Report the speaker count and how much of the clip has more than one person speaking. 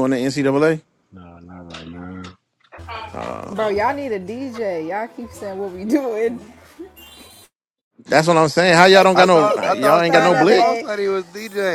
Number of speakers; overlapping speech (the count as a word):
four, about 15%